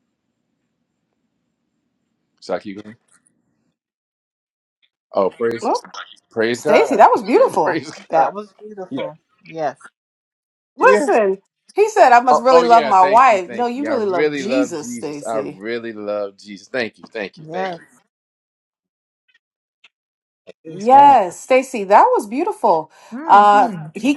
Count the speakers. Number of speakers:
3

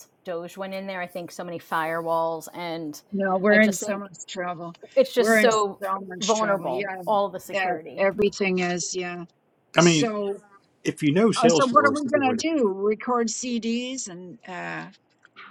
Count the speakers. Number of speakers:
3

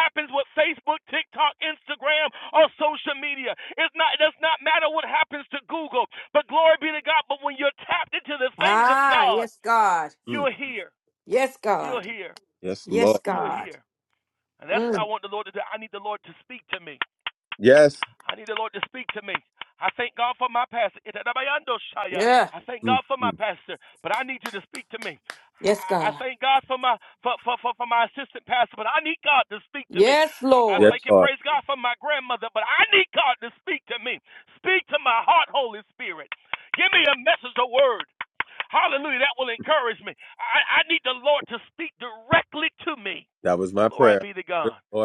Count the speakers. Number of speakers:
3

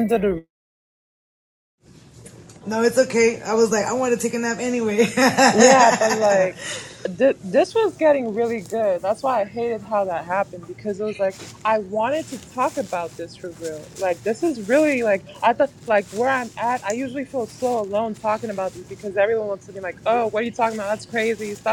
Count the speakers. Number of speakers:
2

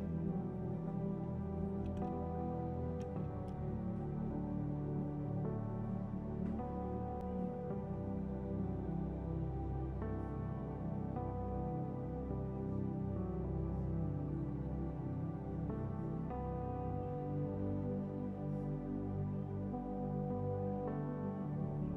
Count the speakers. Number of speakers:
0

